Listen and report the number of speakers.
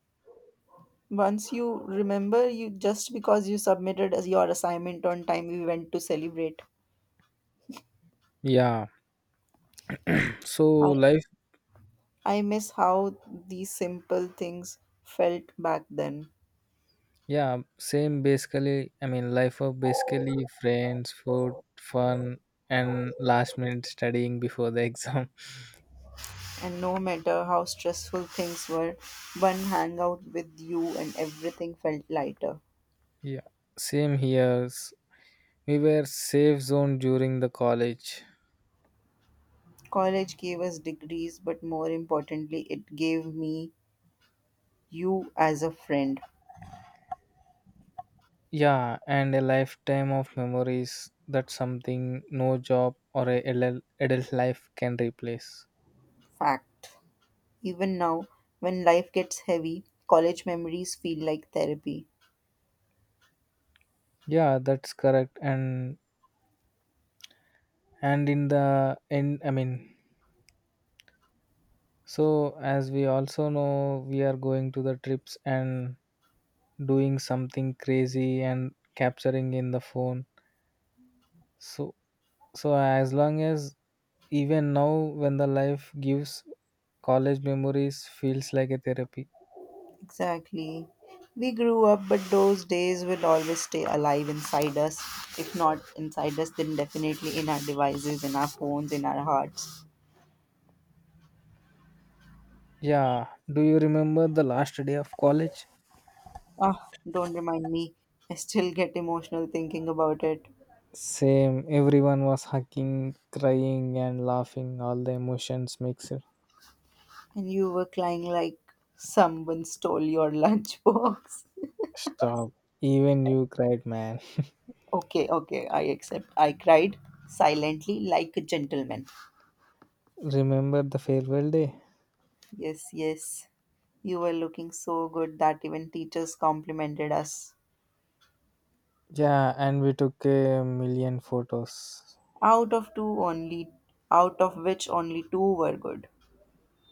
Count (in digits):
2